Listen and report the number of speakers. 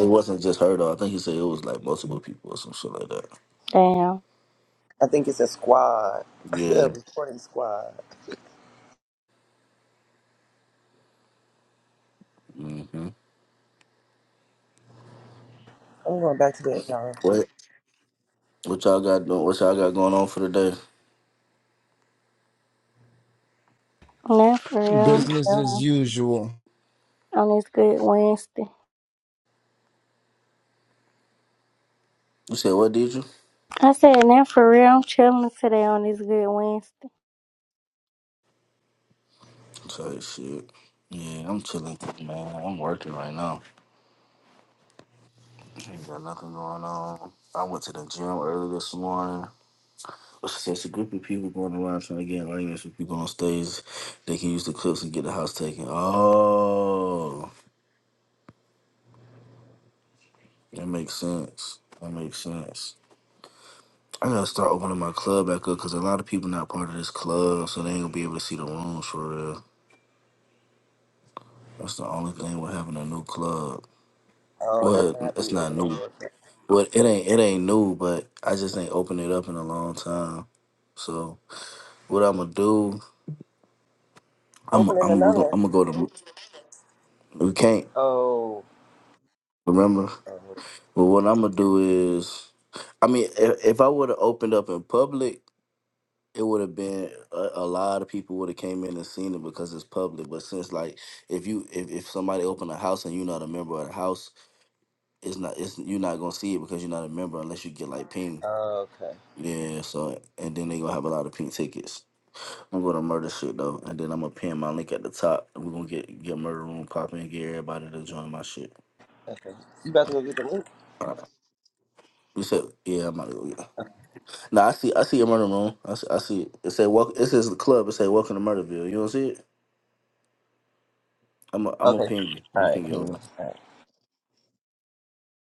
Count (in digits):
4